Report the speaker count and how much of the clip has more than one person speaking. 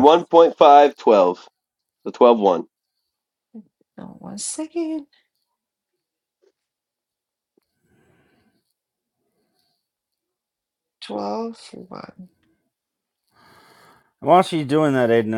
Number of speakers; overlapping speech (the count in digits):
3, under 1%